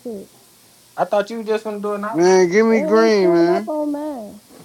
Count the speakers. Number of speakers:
3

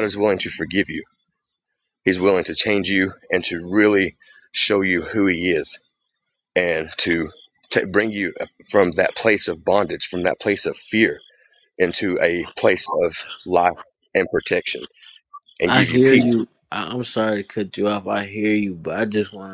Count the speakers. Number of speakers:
2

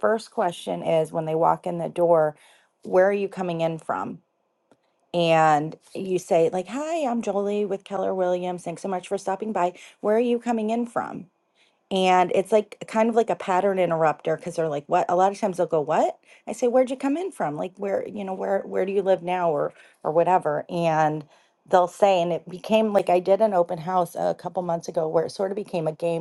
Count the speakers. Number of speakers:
1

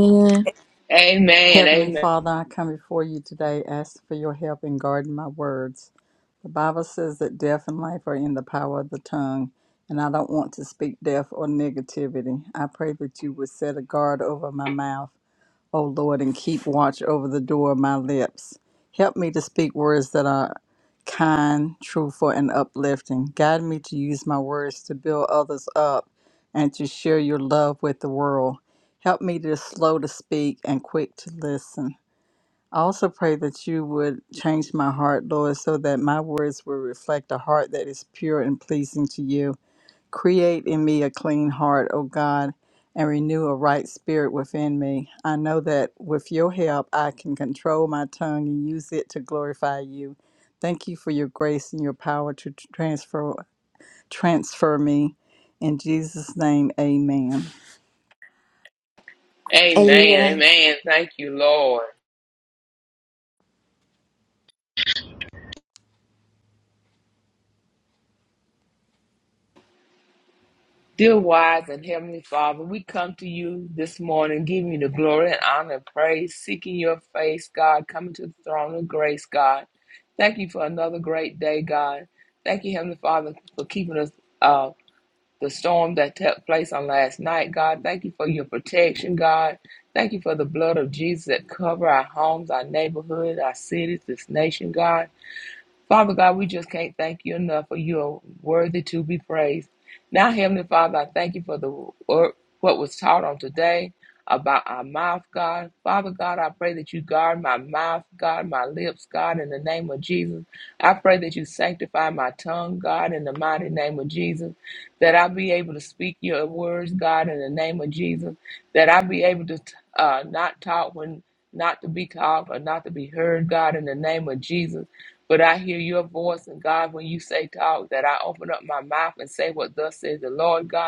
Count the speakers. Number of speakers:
3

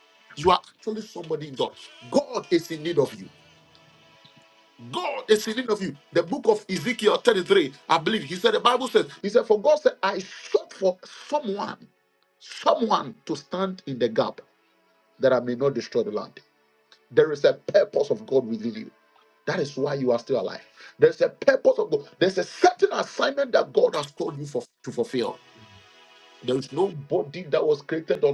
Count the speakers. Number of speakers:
1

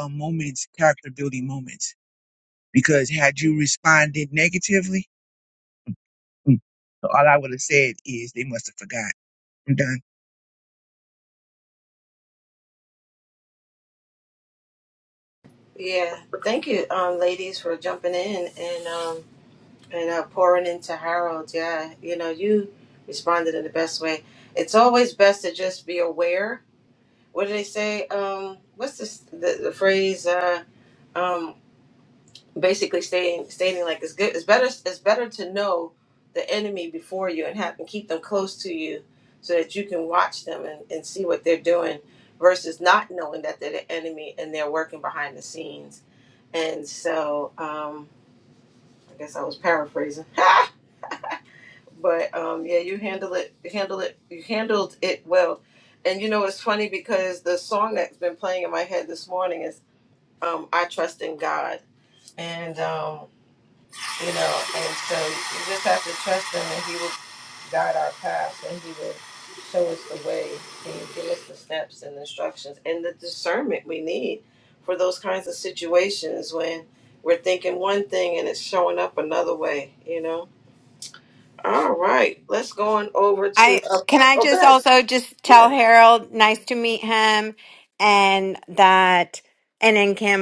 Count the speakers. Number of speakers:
3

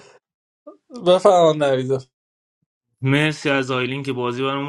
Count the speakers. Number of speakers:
2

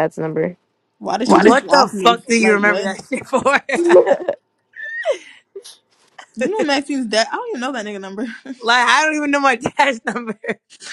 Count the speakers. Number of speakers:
3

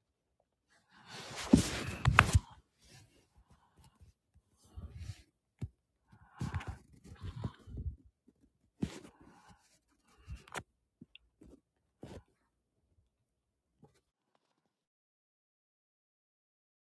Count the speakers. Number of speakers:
0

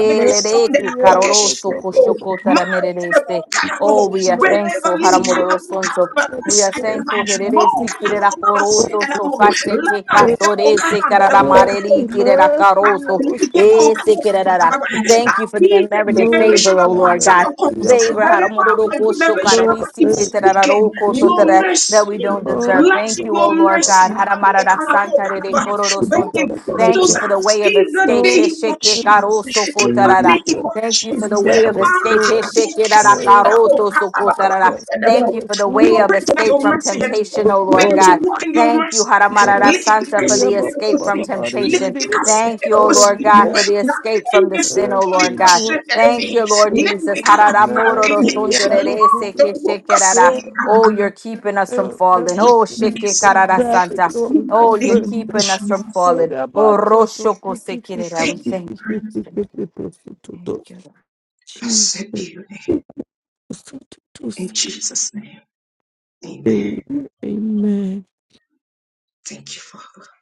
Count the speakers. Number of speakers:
3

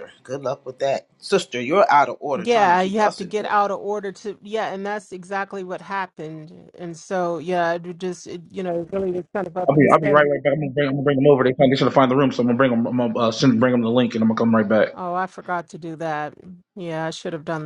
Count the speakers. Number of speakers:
3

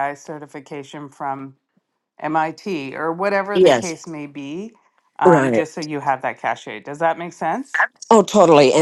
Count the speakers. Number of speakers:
2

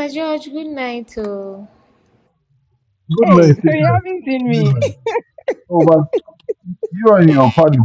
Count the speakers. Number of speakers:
3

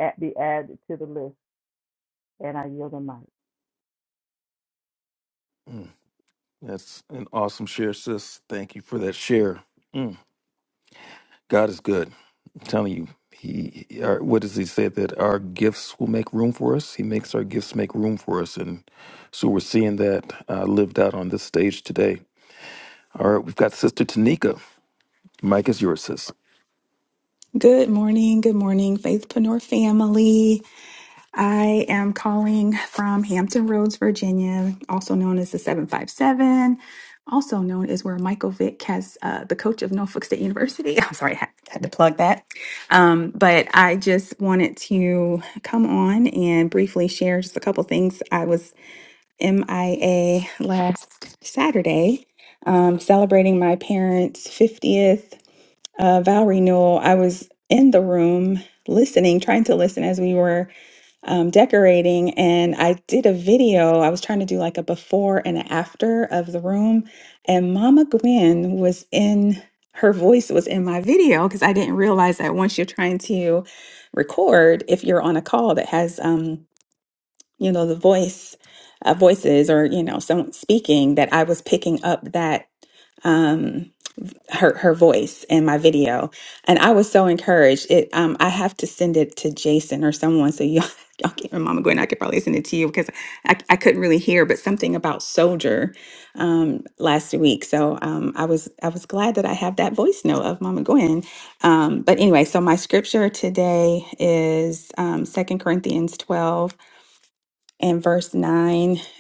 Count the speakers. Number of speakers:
3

